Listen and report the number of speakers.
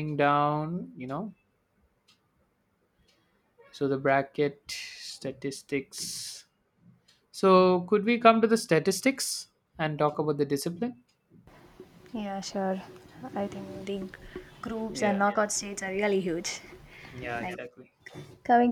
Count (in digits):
2